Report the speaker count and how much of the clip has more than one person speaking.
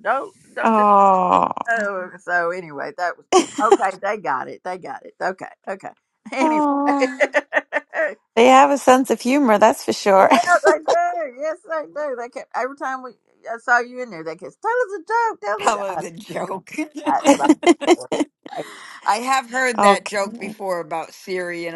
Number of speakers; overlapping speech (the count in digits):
3, about 8%